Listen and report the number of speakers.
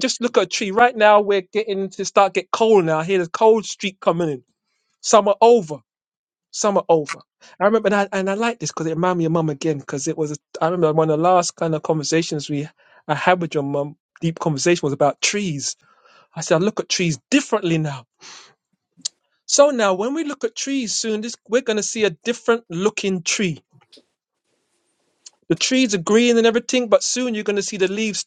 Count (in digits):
1